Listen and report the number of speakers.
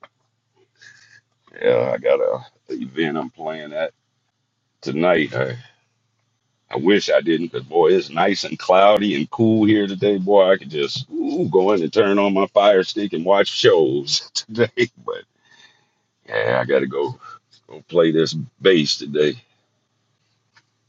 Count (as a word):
one